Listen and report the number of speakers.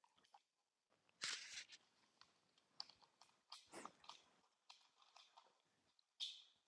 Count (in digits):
0